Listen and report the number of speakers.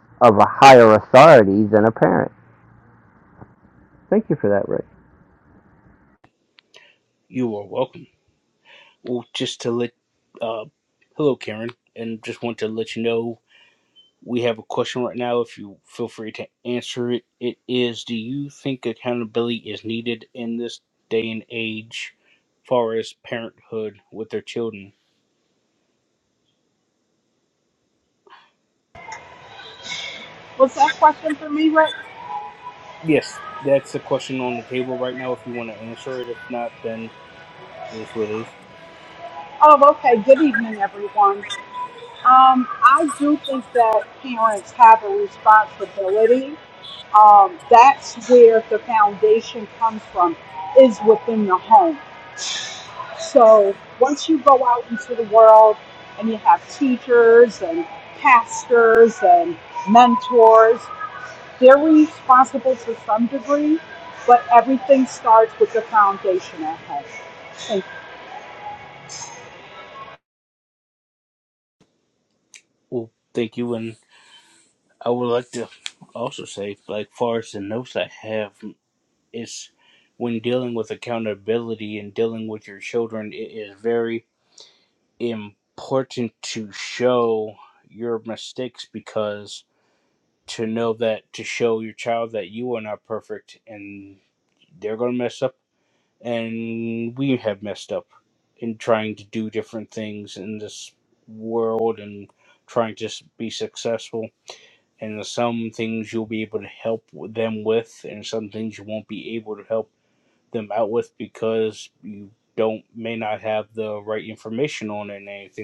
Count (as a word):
three